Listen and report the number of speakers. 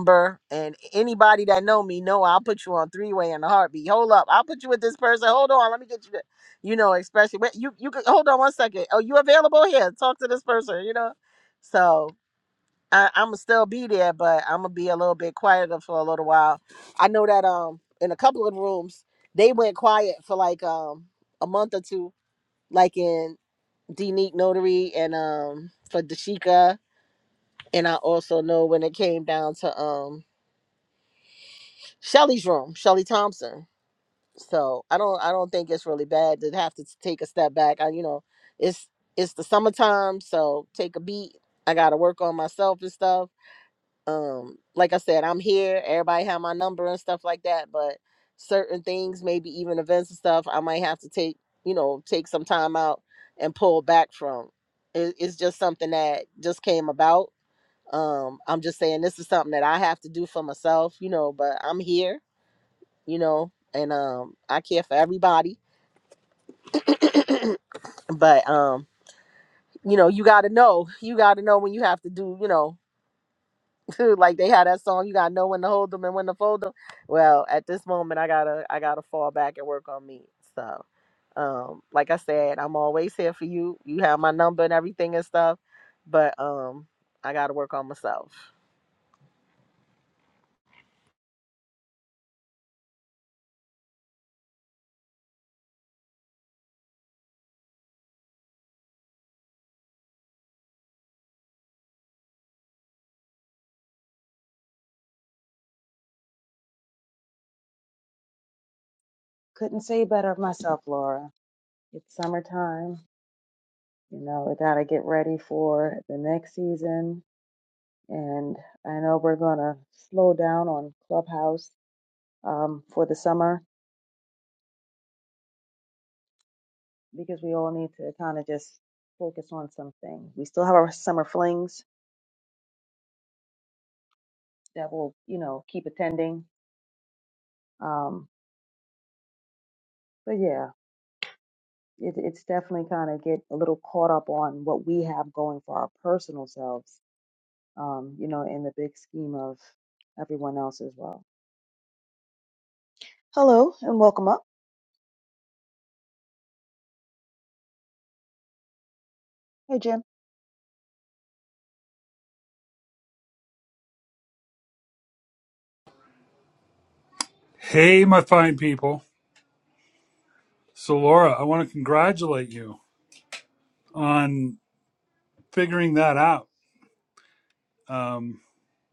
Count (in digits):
3